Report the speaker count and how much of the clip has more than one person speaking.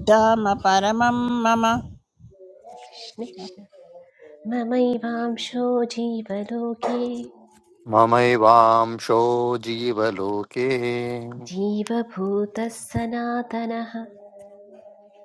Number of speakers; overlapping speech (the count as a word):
three, about 1%